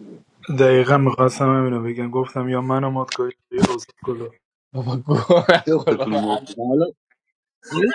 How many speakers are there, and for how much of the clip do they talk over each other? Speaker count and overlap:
3, about 11%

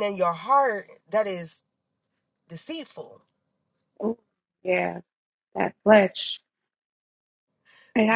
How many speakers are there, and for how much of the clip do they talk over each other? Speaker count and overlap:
2, under 1%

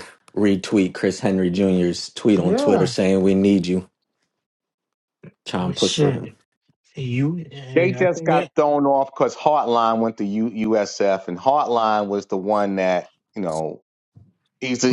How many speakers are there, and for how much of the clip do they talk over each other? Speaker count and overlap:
3, about 13%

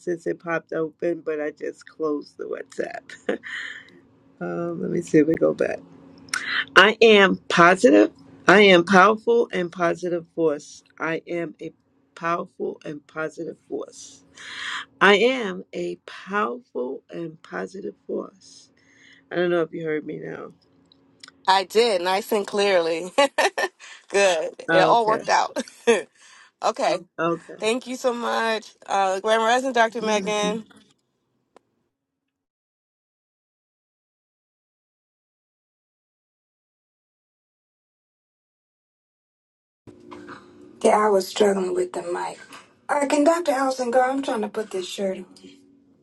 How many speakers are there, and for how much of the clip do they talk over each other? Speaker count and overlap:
3, about 1%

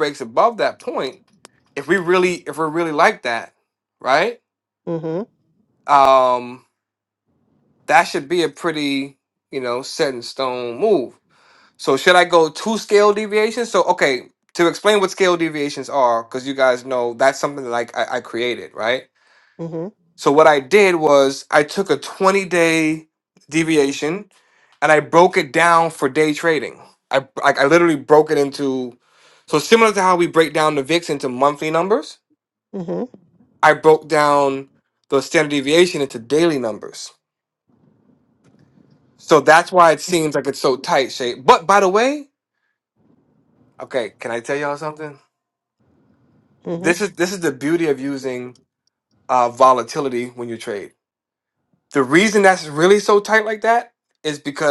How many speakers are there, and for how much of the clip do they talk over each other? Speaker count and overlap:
2, under 1%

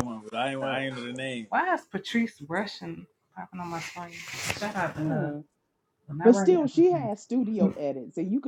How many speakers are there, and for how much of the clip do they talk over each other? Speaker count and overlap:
3, about 12%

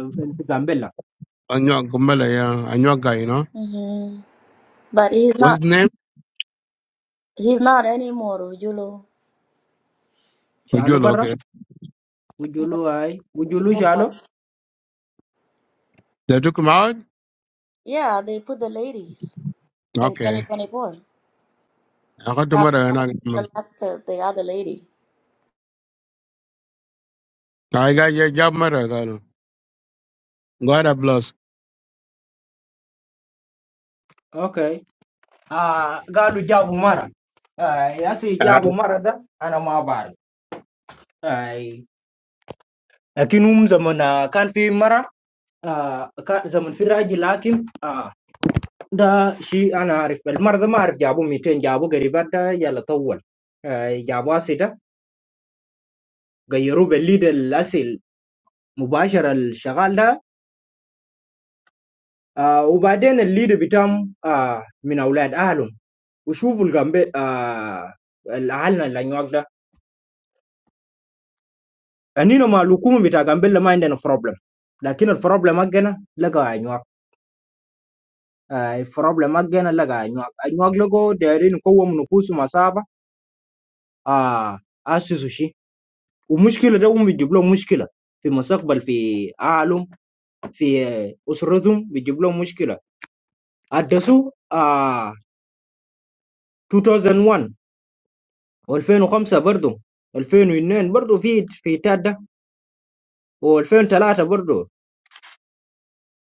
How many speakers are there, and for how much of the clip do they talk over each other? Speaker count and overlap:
3, about 2%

